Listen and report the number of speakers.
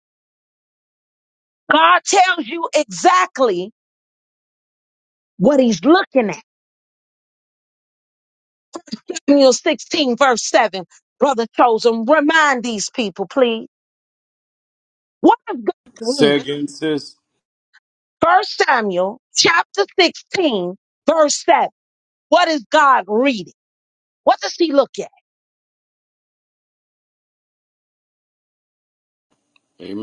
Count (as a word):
two